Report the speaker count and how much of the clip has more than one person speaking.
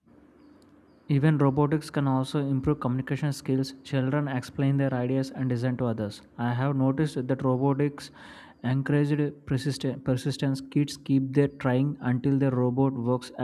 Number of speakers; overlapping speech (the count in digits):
1, no overlap